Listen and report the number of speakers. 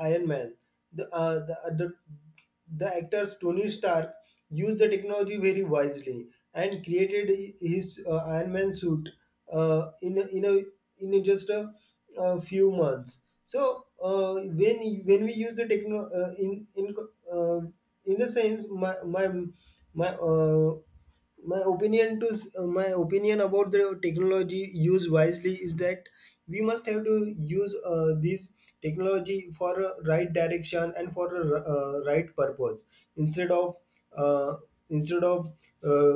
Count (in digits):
1